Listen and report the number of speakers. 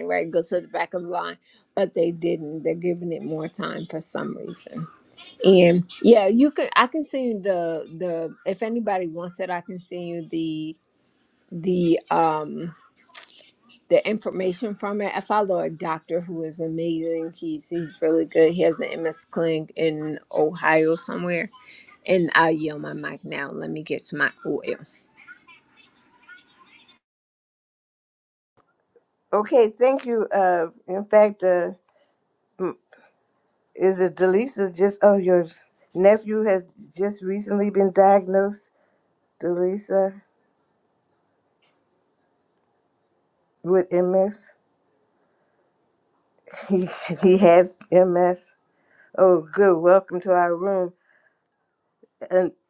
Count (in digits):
2